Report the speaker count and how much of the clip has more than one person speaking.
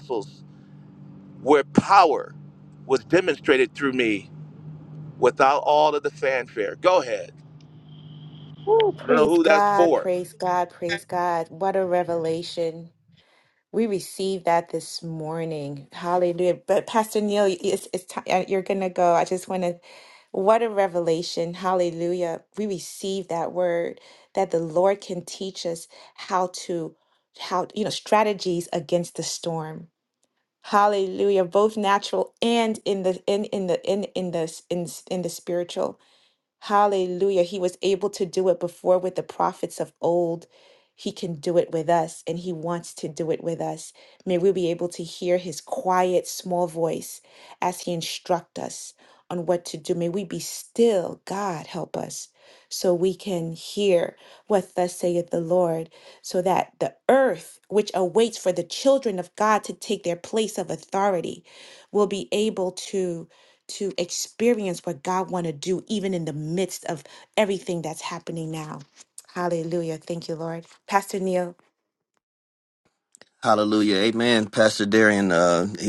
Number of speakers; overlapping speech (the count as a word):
three, about 1%